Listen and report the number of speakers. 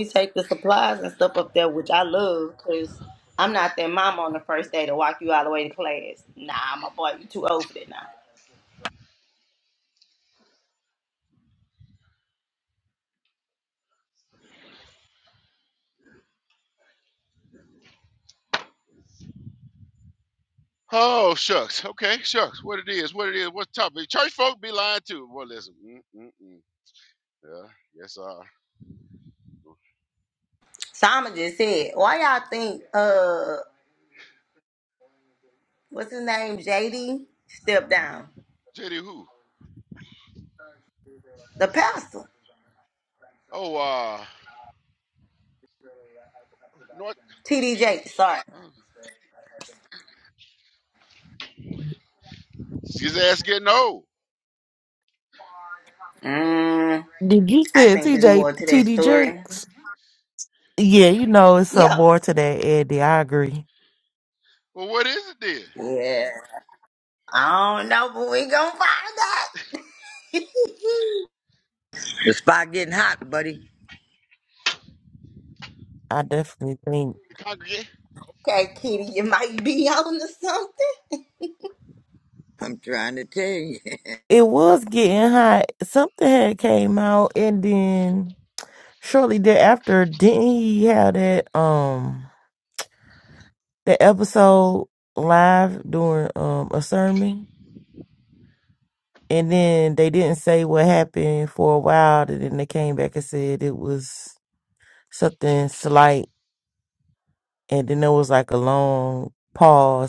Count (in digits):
4